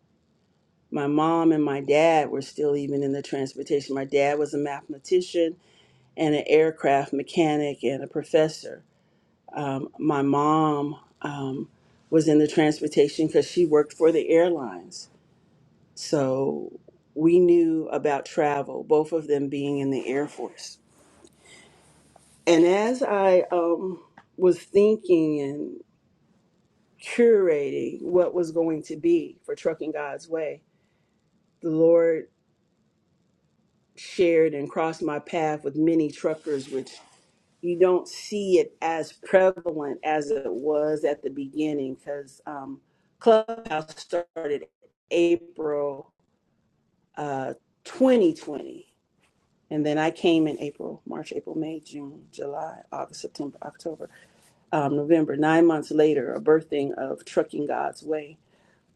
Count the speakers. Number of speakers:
1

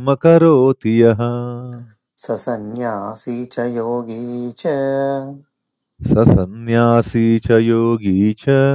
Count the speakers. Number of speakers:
2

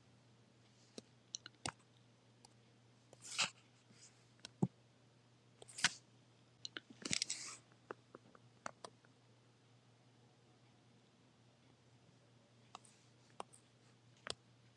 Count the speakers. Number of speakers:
0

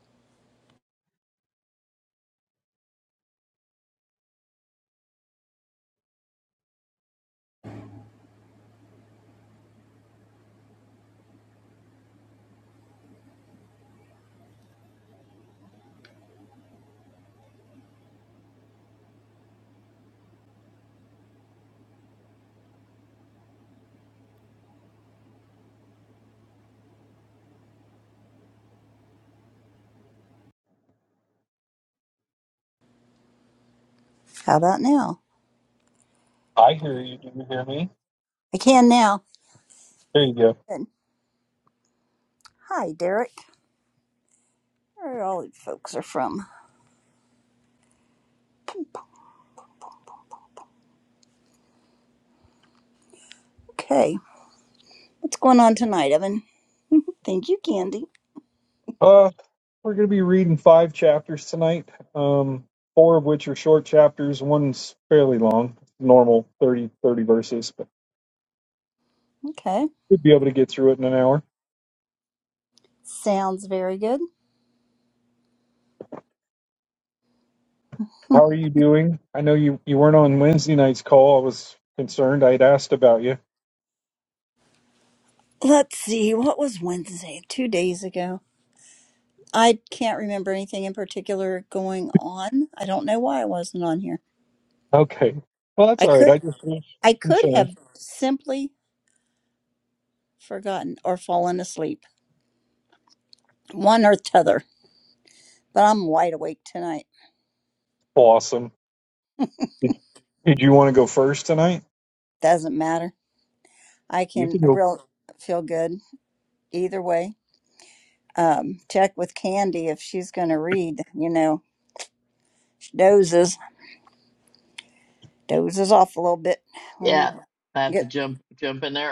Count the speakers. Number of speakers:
3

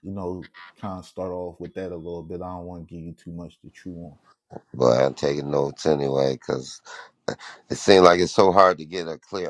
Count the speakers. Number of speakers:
2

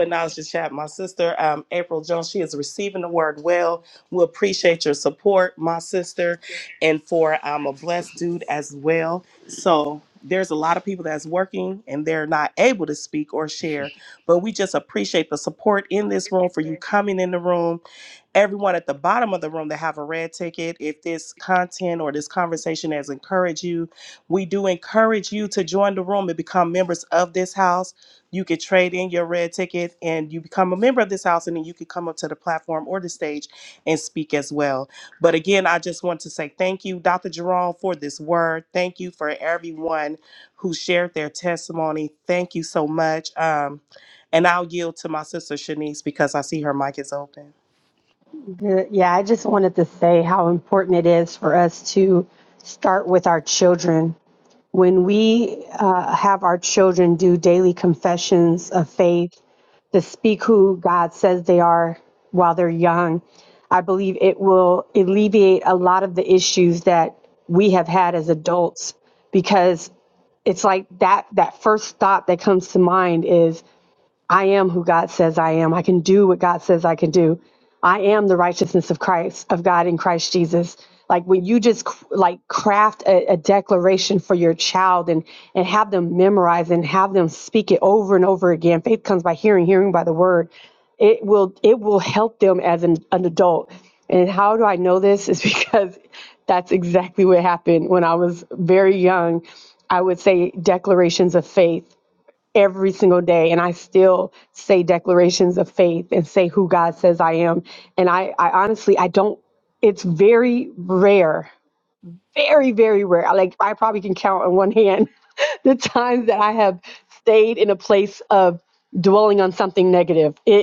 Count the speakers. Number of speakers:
2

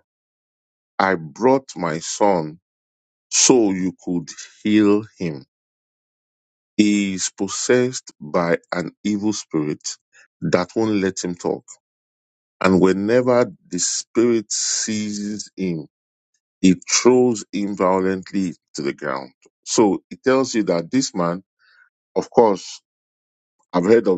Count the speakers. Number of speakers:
1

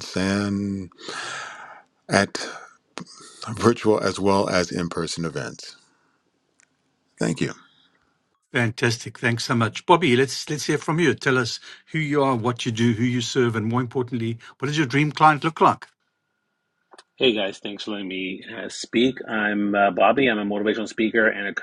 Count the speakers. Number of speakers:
3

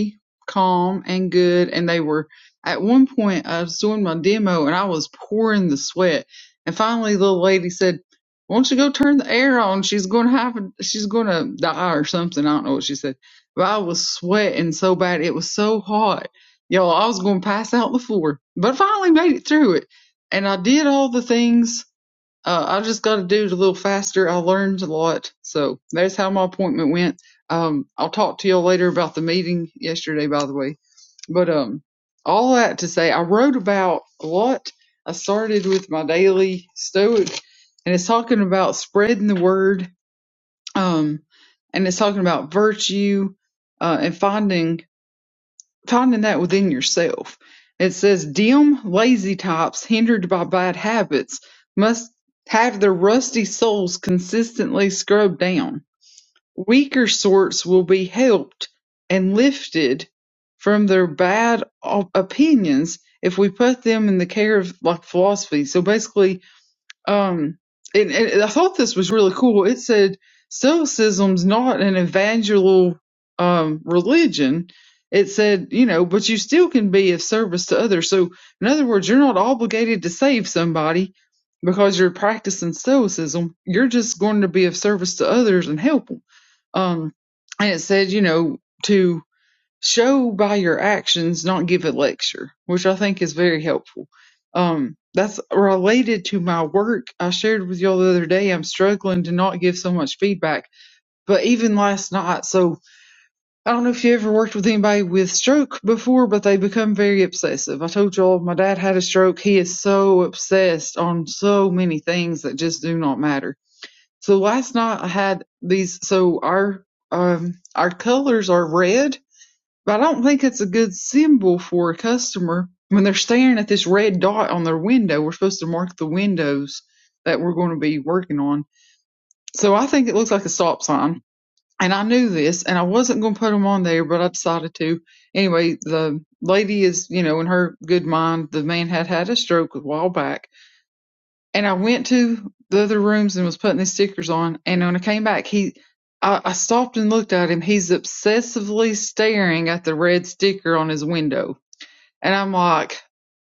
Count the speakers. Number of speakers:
1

